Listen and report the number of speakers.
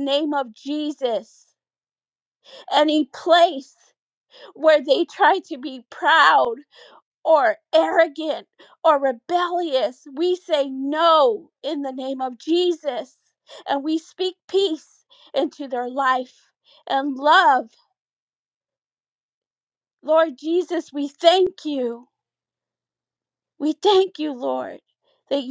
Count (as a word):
one